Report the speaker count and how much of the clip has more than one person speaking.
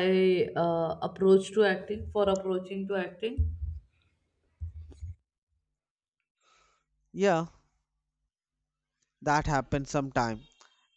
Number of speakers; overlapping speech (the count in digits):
2, no overlap